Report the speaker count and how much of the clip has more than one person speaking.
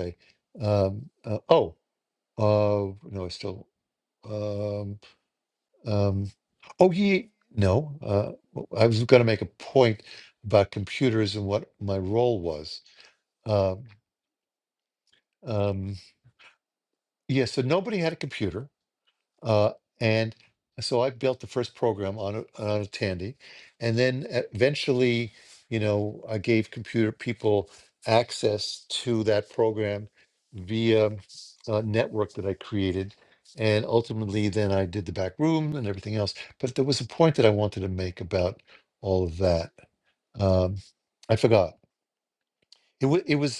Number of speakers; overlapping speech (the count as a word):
one, no overlap